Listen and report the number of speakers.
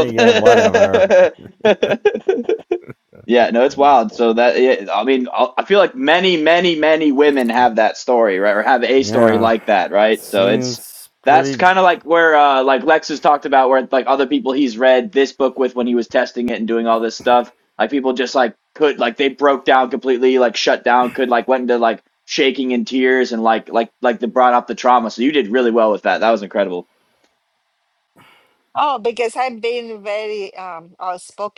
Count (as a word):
three